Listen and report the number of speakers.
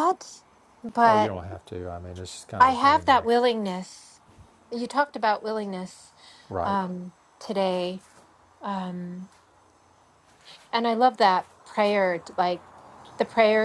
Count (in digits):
2